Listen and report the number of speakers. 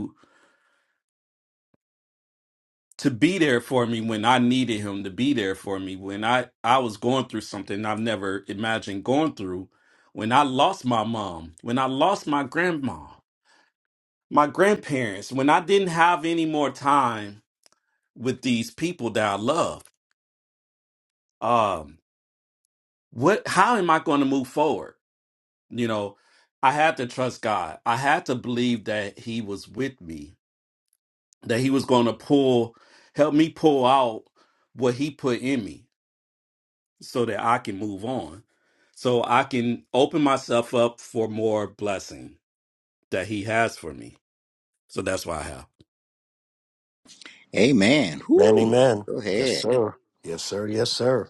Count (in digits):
3